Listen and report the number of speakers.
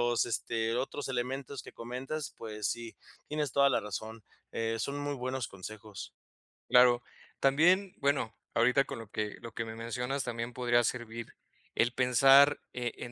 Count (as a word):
two